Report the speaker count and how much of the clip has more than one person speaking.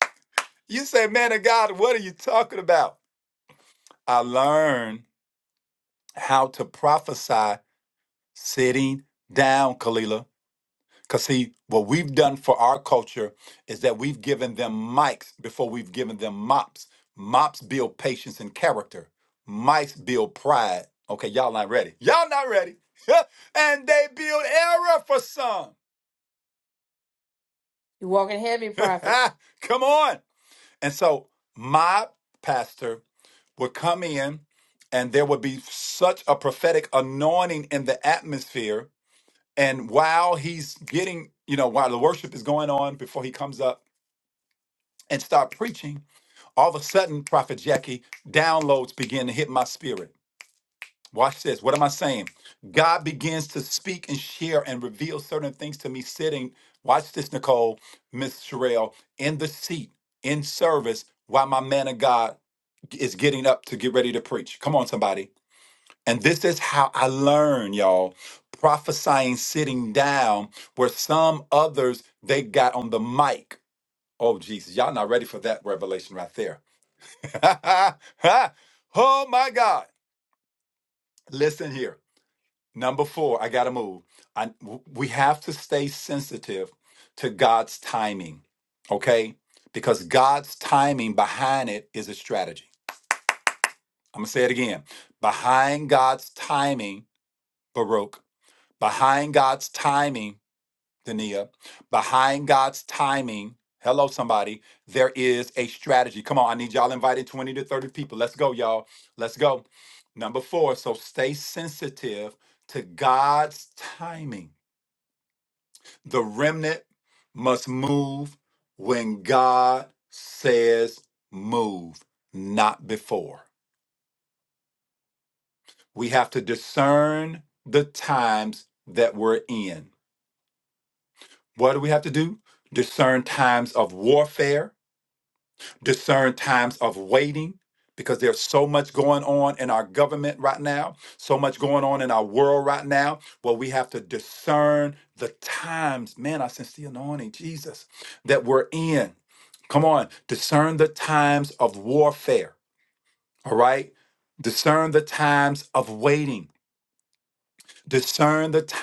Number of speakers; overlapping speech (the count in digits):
2, no overlap